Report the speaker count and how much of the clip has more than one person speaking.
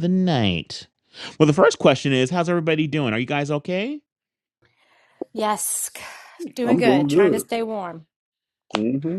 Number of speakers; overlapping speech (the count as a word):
three, about 9%